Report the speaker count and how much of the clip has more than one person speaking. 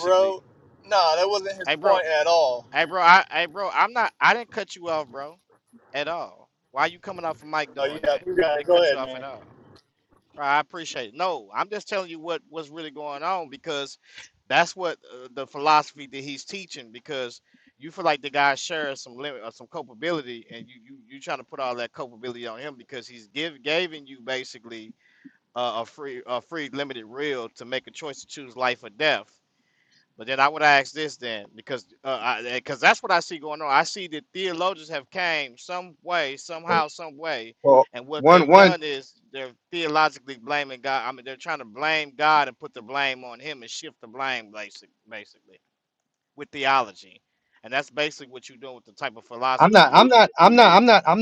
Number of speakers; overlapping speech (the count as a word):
three, about 6%